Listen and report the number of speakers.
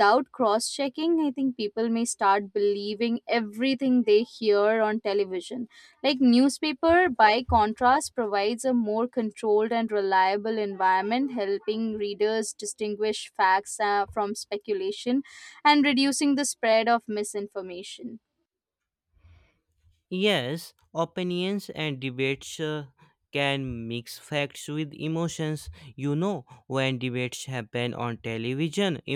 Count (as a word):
two